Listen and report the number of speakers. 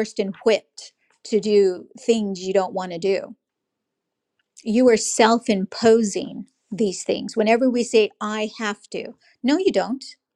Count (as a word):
one